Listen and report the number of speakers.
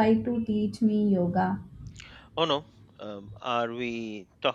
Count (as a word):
two